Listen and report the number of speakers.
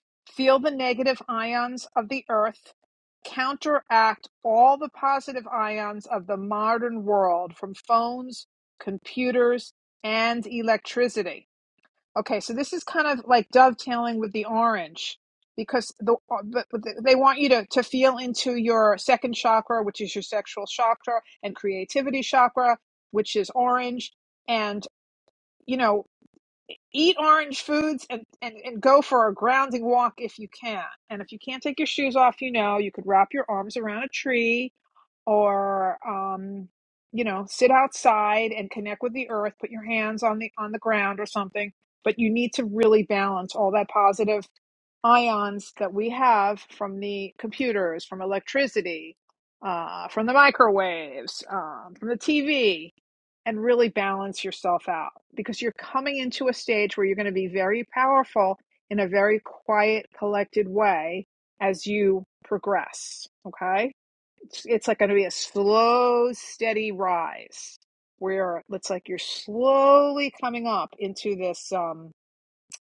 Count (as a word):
one